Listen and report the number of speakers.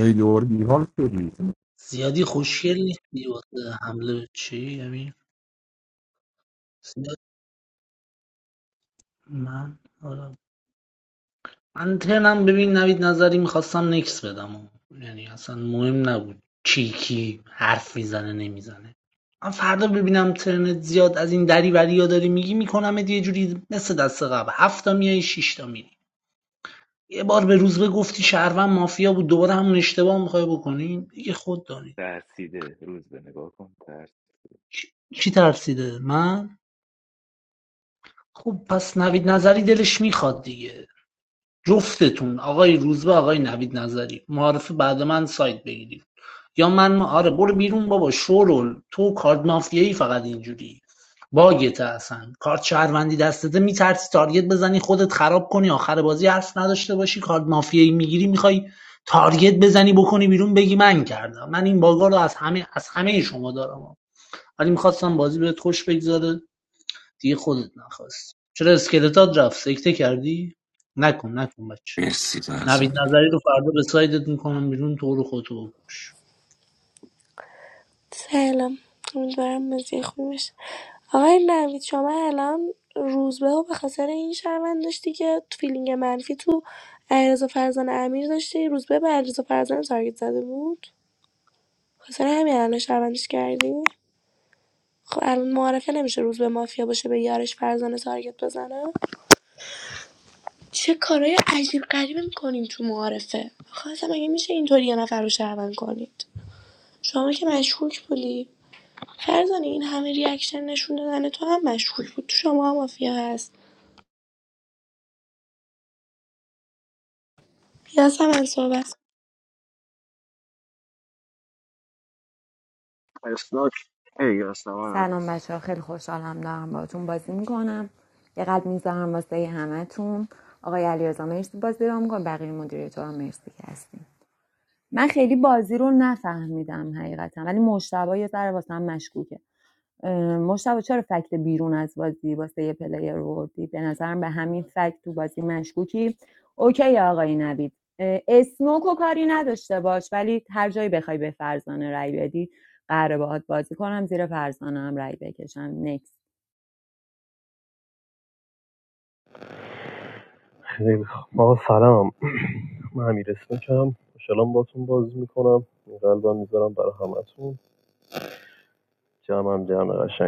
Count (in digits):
8